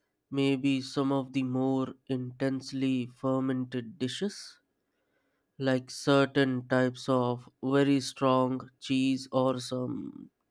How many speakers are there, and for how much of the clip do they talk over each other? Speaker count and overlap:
one, no overlap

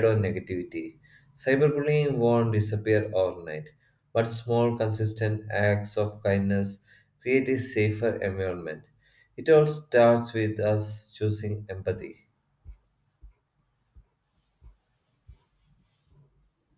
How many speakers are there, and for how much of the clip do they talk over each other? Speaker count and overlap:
one, no overlap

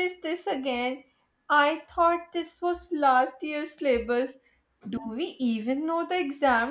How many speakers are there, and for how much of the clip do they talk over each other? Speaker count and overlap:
one, no overlap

